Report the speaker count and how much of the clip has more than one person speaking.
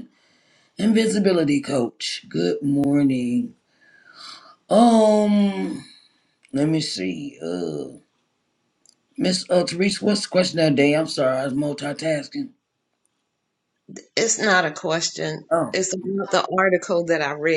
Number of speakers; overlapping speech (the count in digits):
2, about 1%